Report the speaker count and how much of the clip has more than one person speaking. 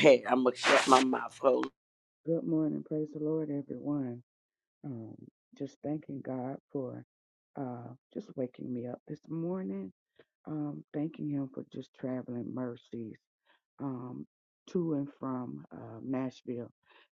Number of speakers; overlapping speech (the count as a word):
two, no overlap